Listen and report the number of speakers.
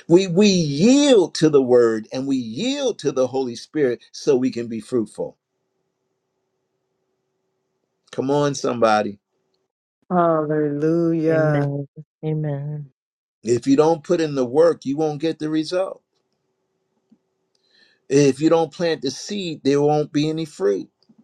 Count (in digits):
3